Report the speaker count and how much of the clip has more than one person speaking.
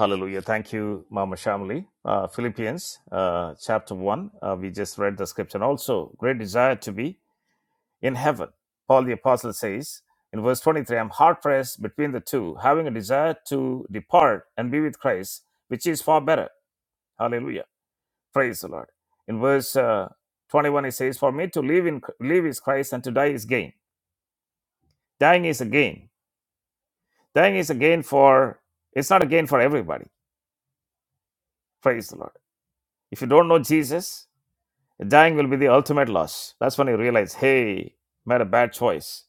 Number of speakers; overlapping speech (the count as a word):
one, no overlap